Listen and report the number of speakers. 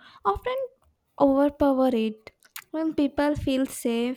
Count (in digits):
1